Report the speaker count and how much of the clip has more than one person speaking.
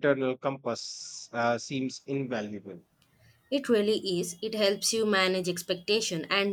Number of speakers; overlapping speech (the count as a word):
two, no overlap